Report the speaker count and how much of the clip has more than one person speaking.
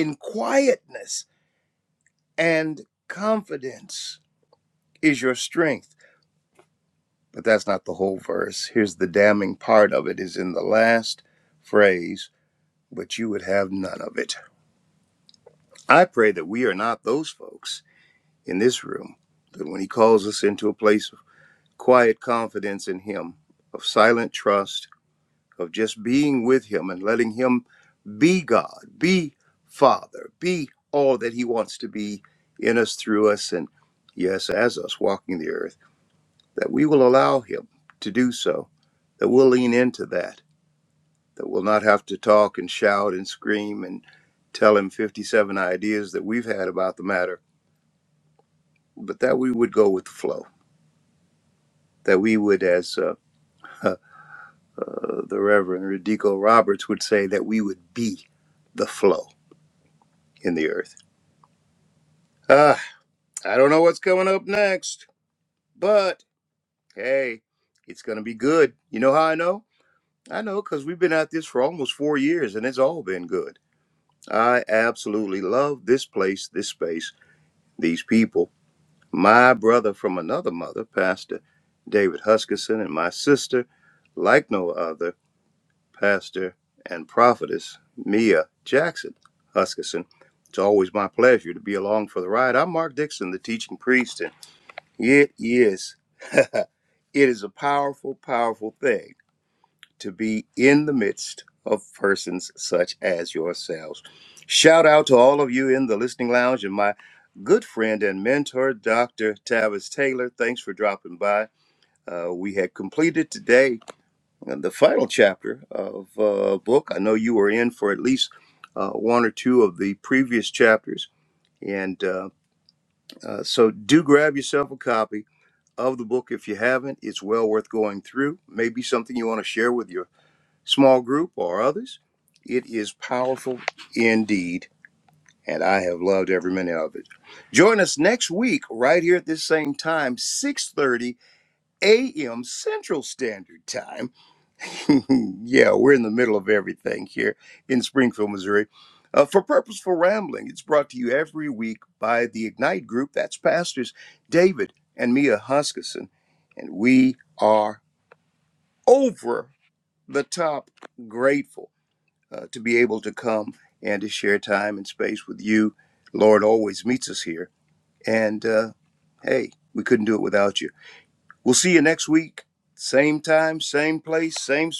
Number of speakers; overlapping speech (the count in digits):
1, no overlap